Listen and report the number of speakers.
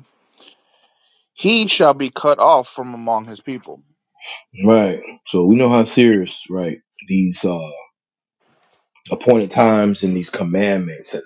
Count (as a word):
two